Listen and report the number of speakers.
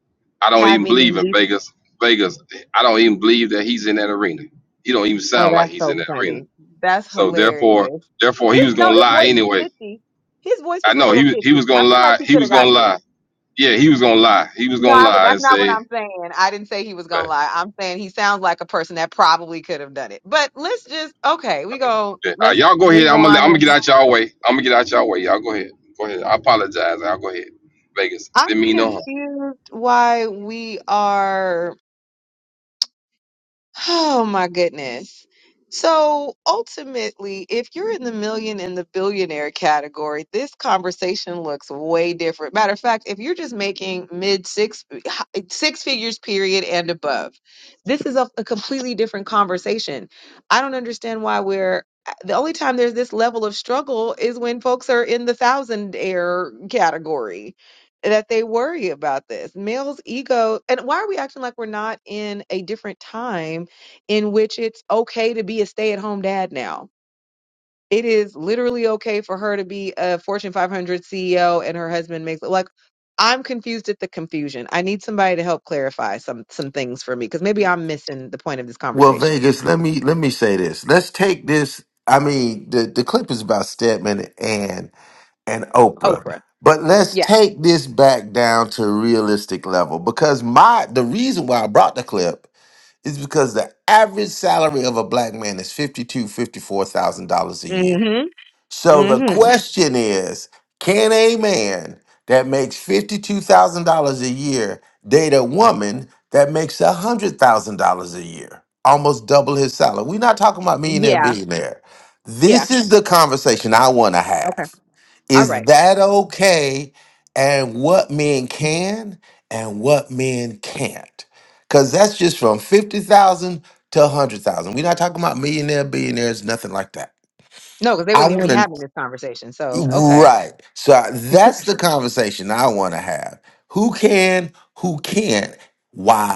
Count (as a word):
three